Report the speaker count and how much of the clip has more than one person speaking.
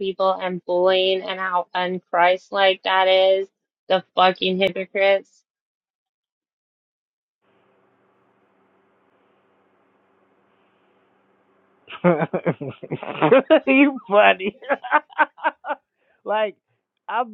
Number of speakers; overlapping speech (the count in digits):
2, no overlap